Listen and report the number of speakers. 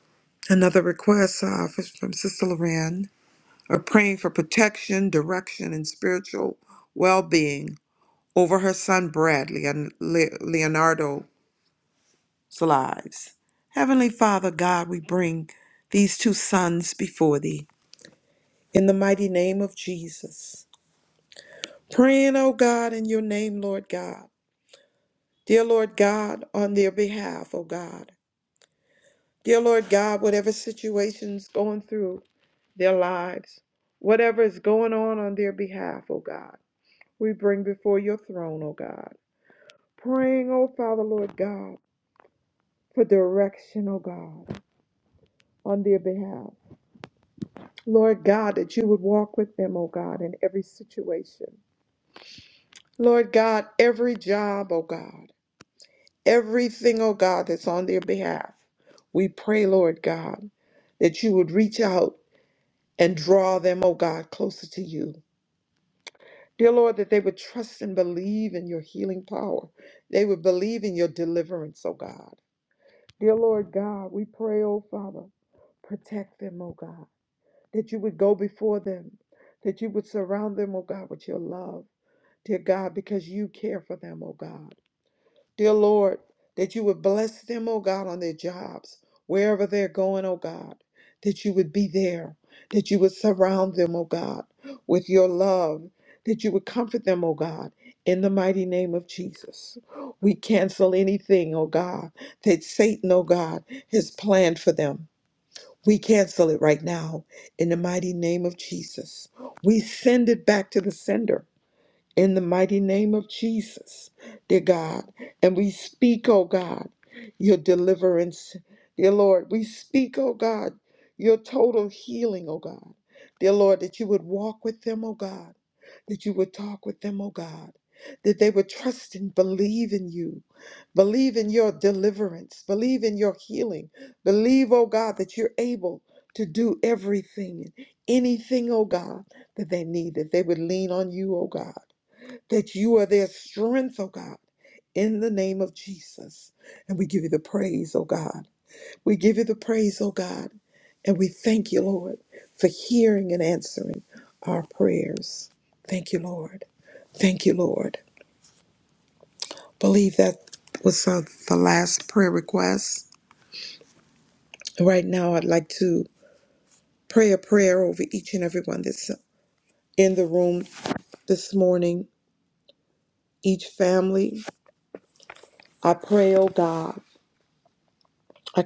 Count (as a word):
one